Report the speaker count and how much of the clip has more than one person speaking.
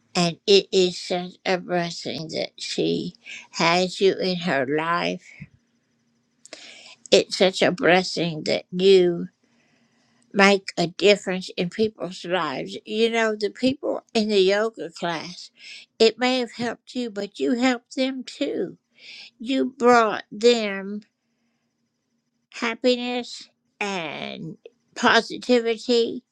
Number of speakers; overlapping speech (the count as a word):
one, no overlap